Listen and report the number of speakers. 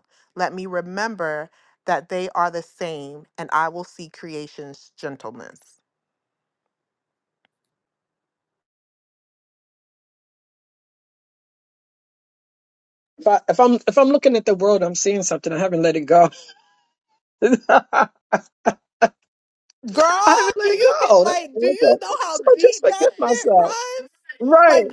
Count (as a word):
two